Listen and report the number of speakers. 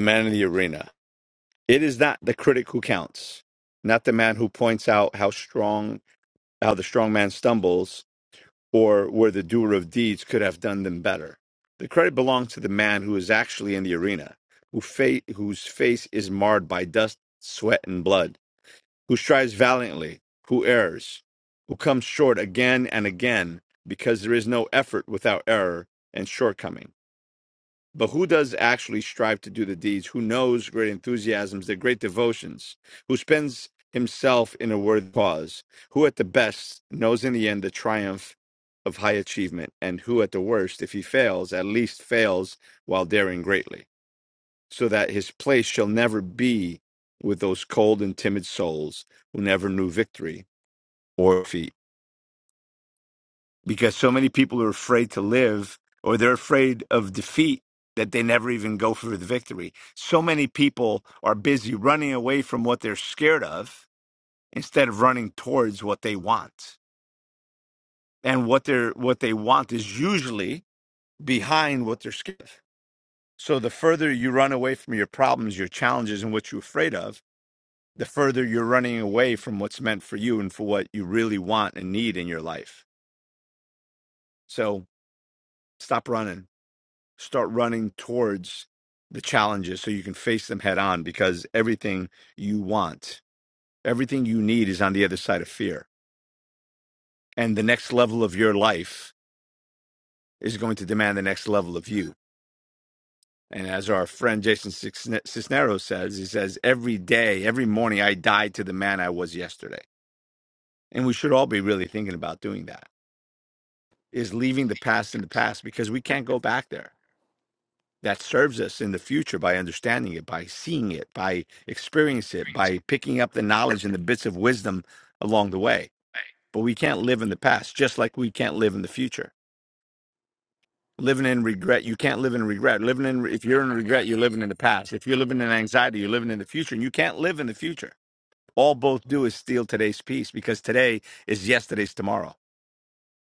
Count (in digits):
1